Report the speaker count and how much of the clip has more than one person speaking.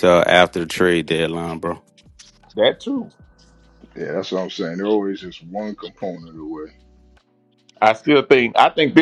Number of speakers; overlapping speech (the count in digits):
3, no overlap